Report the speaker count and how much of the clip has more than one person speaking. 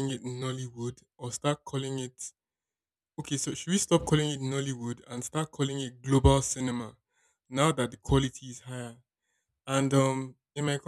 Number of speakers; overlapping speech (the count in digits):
1, no overlap